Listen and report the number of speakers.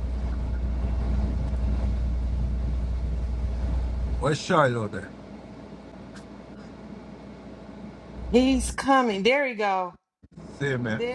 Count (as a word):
two